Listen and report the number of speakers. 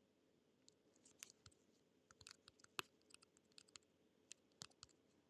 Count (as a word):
zero